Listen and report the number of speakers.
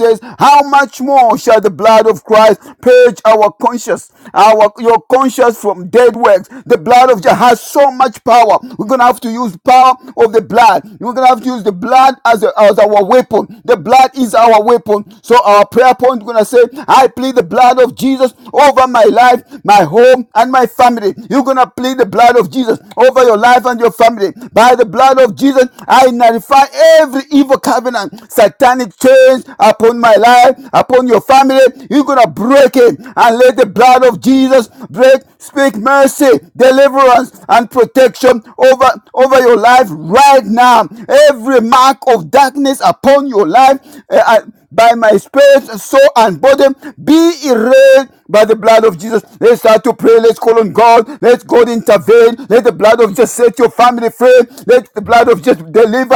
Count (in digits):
1